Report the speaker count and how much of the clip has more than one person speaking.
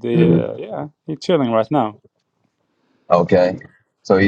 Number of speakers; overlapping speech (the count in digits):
2, about 8%